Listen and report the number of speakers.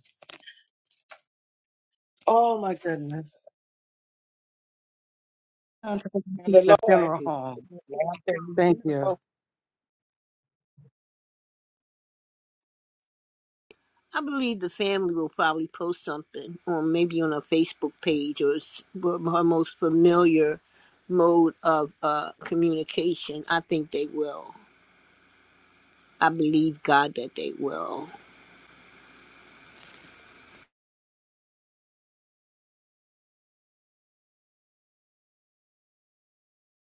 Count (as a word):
three